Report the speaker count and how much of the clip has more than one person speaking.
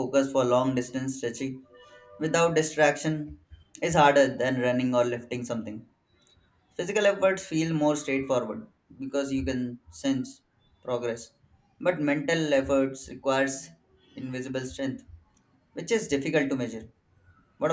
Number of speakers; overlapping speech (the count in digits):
1, no overlap